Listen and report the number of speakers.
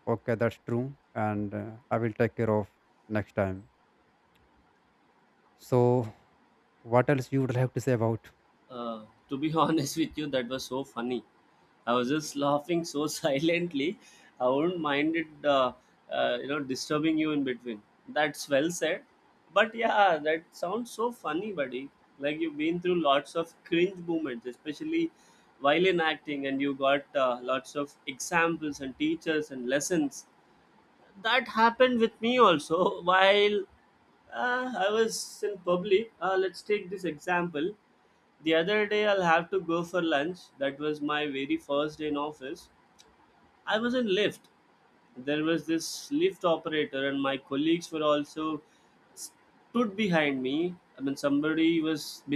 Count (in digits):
2